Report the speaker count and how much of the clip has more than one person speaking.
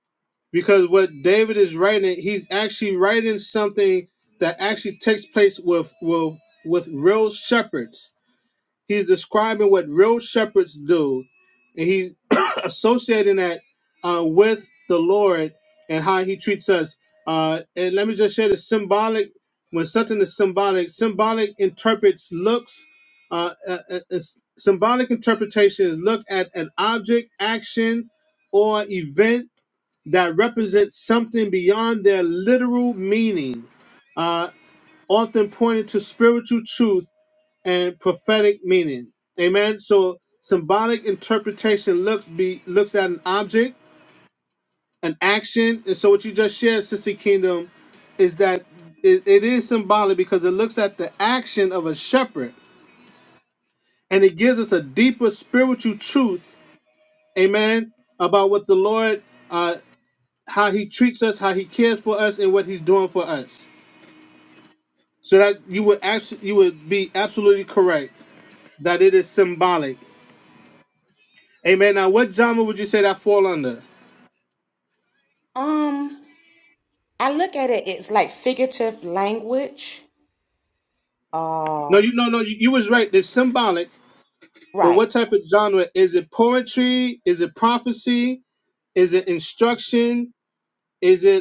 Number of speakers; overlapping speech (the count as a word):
two, under 1%